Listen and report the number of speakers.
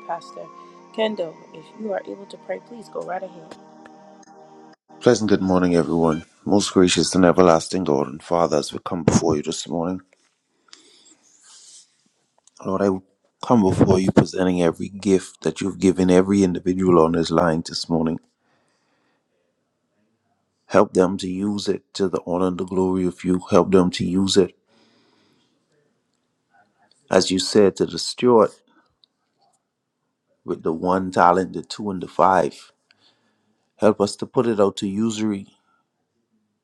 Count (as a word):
two